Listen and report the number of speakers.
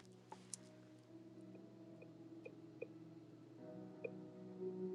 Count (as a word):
zero